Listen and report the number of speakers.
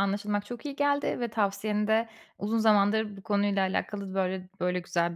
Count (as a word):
one